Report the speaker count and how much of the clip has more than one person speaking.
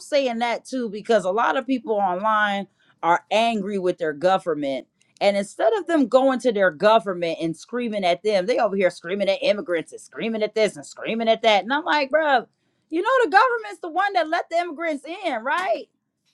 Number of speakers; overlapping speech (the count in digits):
1, no overlap